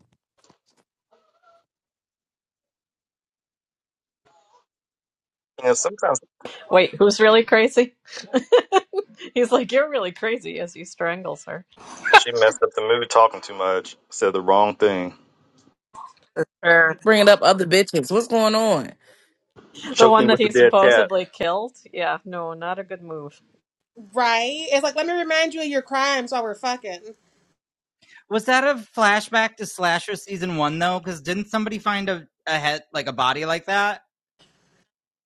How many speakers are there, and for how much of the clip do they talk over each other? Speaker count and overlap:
5, about 3%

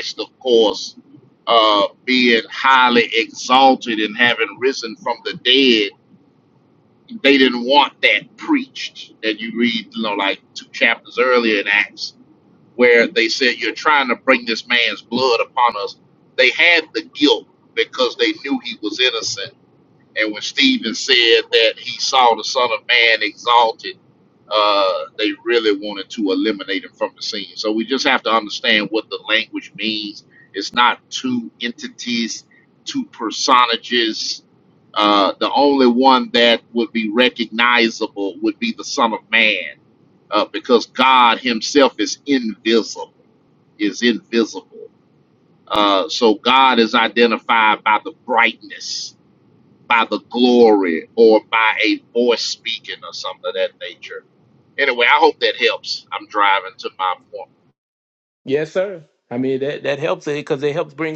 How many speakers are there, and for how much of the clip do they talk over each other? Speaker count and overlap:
2, no overlap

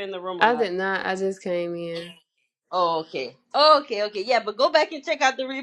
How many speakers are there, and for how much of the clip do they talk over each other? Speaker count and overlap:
2, about 5%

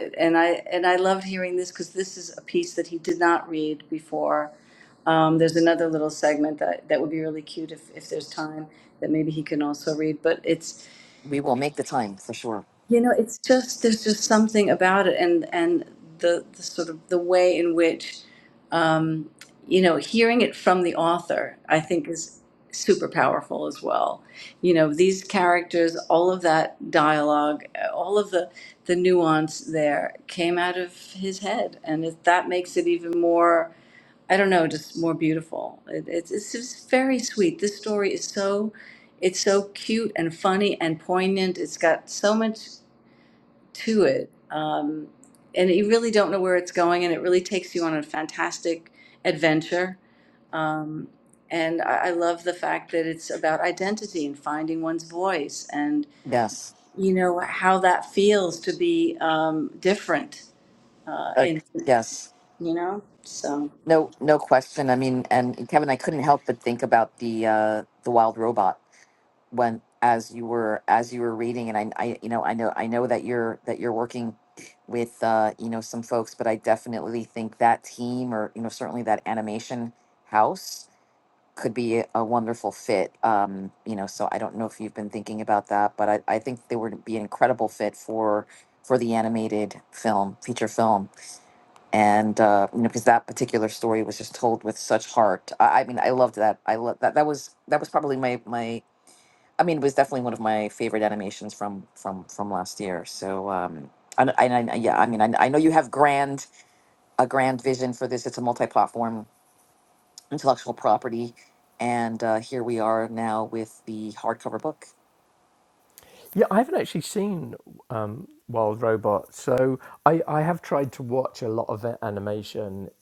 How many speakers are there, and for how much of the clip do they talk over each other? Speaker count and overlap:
3, under 1%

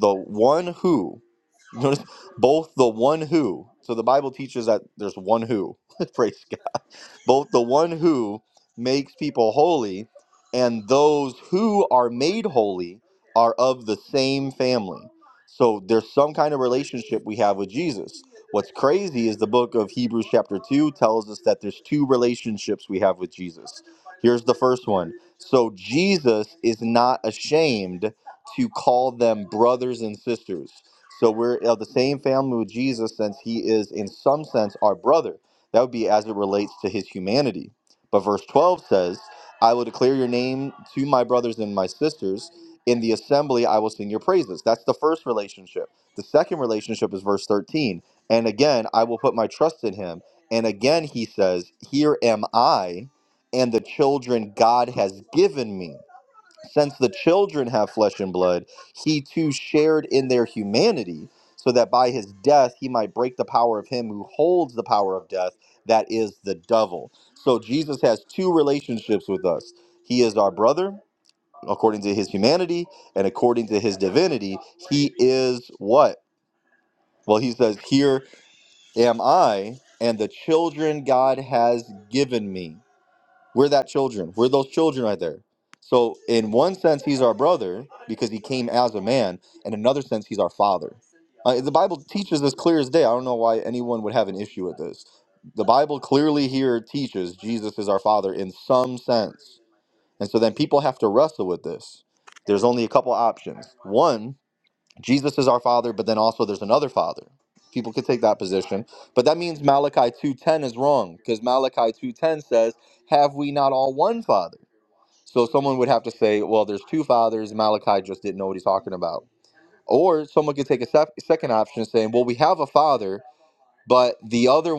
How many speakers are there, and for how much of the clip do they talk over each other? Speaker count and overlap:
1, no overlap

